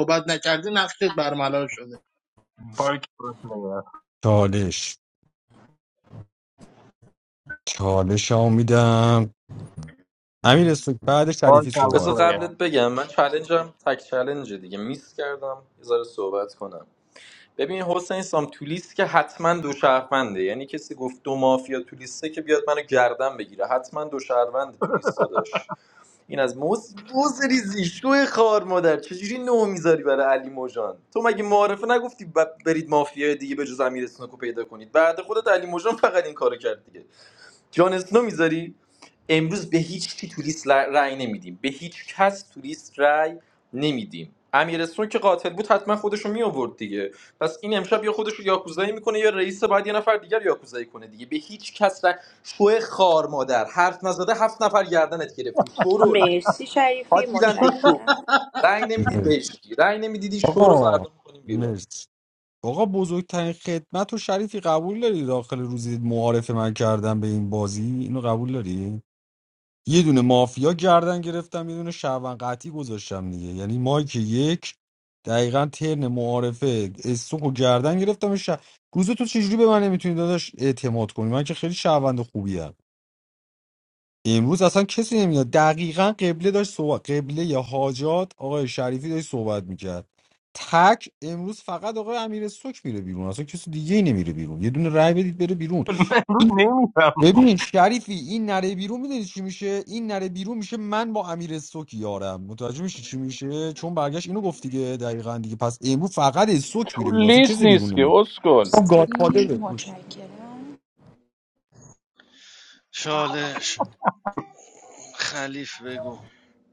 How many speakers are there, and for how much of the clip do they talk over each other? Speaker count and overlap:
7, about 4%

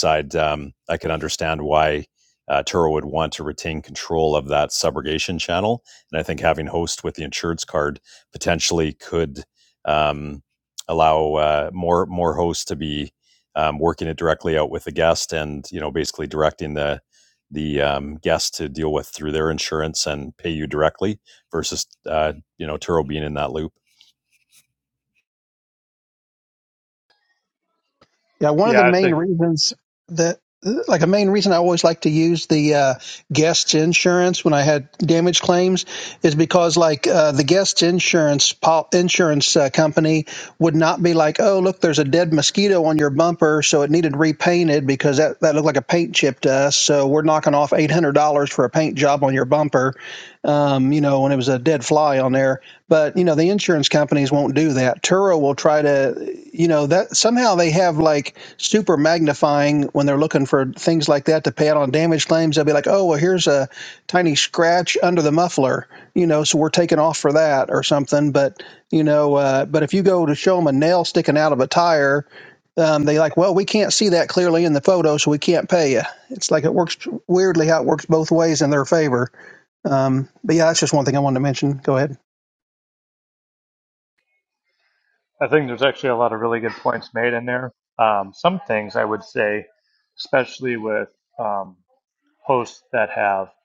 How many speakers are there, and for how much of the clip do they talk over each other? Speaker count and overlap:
3, about 1%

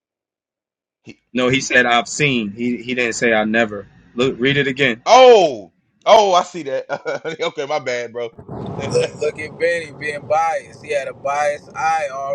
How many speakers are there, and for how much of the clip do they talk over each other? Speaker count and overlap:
3, no overlap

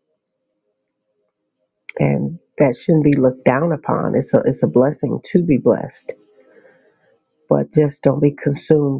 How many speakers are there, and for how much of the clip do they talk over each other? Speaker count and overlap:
1, no overlap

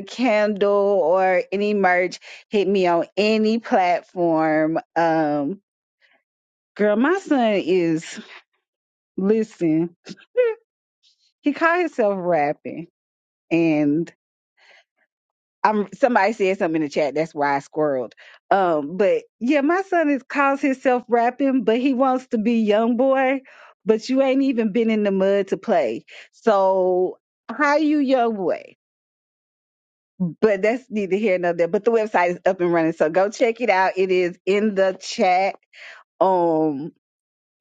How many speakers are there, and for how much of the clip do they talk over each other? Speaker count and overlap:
1, no overlap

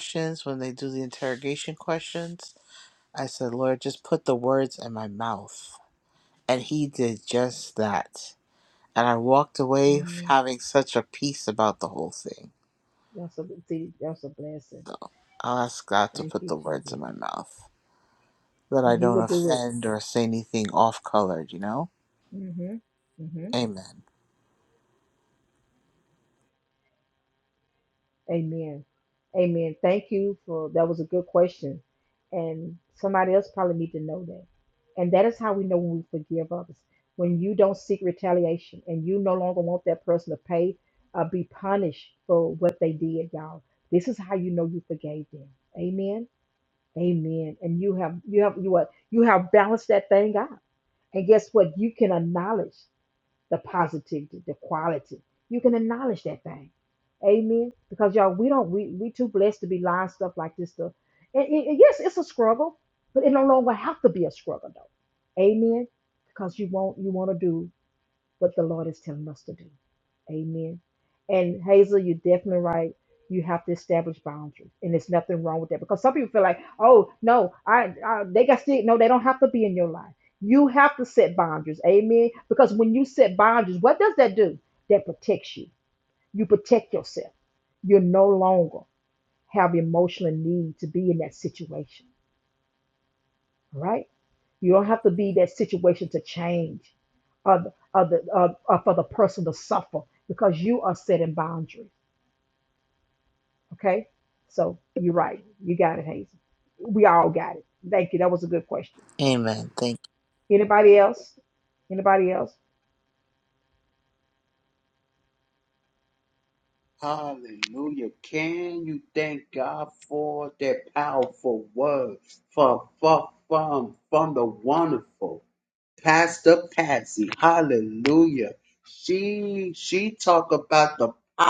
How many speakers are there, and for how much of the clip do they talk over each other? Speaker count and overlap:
3, about 1%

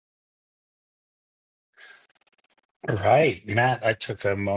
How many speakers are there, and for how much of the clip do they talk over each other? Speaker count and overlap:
1, no overlap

